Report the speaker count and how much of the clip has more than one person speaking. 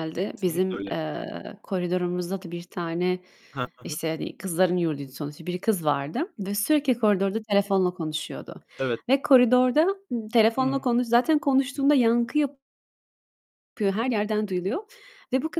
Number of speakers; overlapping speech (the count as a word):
two, about 6%